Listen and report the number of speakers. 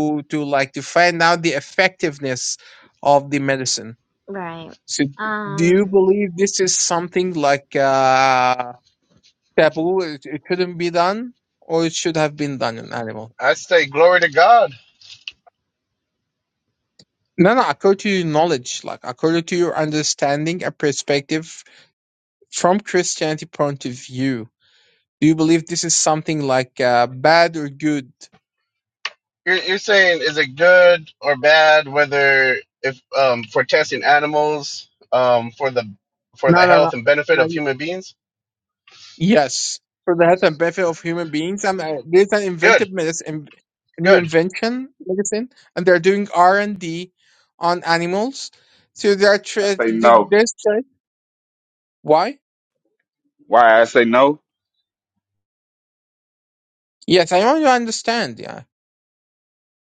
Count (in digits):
4